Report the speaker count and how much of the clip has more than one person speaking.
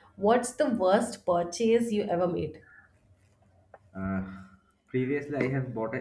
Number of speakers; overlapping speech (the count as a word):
two, no overlap